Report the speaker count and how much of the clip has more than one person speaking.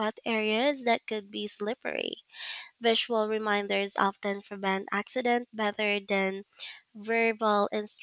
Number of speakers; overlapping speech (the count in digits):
1, no overlap